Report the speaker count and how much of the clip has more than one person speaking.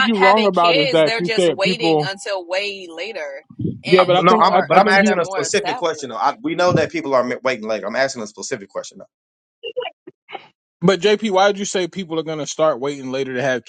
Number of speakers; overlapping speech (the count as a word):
three, about 31%